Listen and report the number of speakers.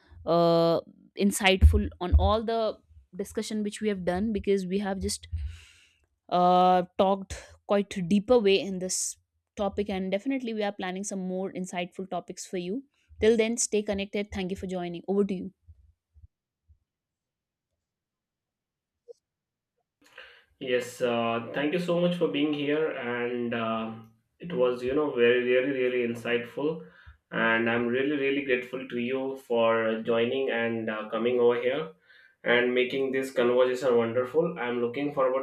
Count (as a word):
two